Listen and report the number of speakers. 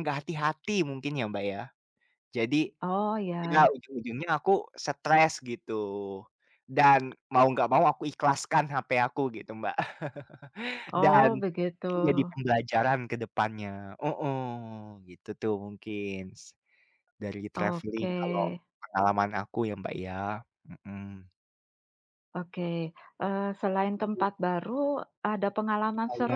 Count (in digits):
2